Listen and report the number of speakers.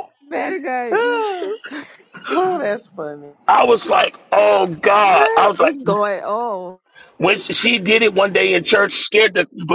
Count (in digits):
3